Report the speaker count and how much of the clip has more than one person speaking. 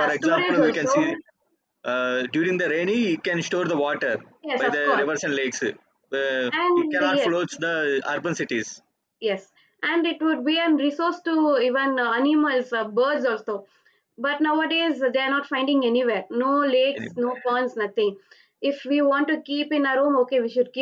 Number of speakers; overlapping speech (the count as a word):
two, about 10%